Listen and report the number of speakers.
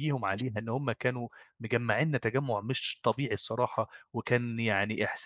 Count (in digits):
1